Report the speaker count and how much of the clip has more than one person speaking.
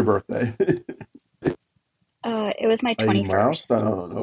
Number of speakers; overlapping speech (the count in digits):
2, about 20%